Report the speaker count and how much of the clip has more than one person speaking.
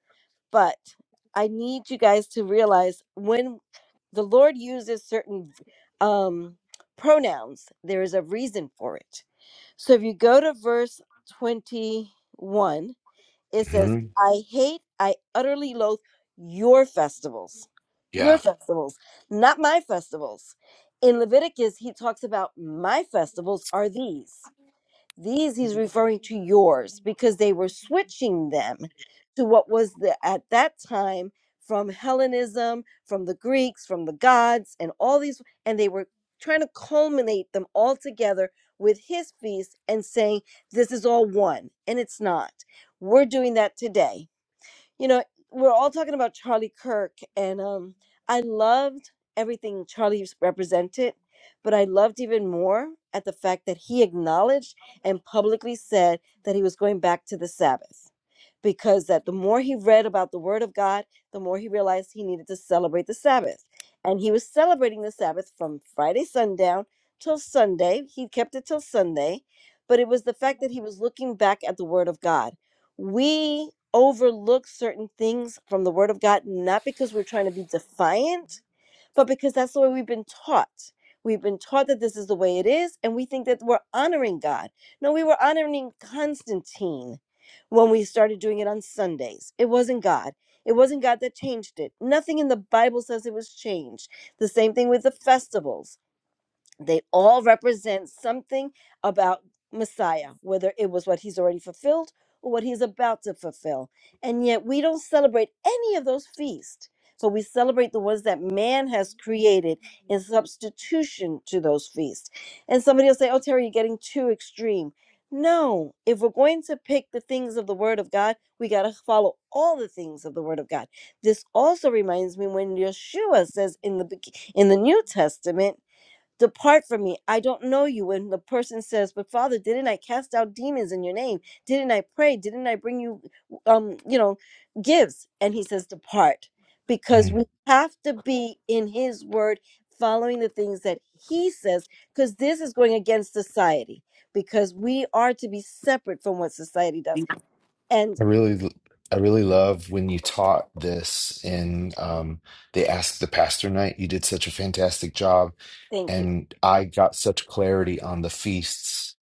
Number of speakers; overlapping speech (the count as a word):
two, about 1%